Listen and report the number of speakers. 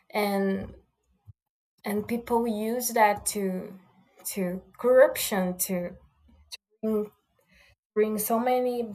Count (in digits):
1